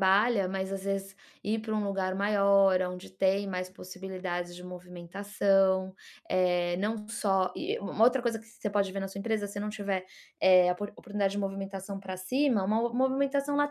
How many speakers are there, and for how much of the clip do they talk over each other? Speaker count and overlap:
1, no overlap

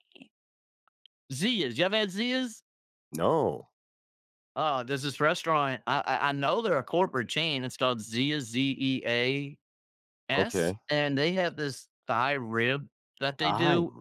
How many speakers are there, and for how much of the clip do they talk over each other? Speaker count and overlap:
2, about 4%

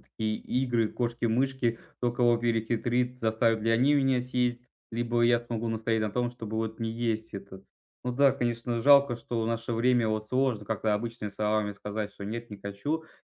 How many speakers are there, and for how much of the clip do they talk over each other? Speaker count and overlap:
1, no overlap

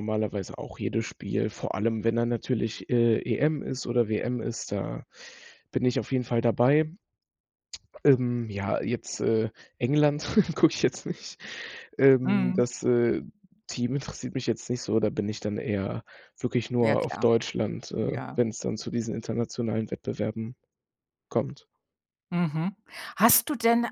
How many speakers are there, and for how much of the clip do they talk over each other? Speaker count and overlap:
2, about 5%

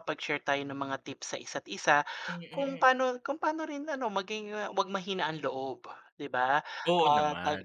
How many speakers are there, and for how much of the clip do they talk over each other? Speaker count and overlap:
2, about 13%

